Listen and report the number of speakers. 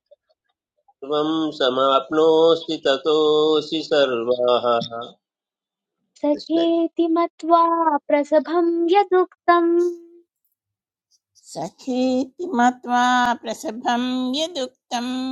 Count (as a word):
three